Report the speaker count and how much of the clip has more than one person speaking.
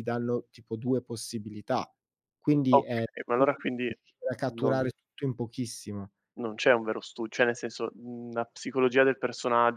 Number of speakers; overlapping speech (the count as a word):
two, about 8%